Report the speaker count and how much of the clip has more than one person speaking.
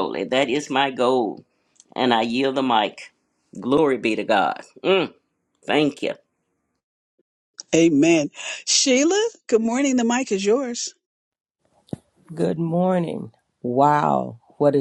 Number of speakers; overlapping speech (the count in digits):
3, no overlap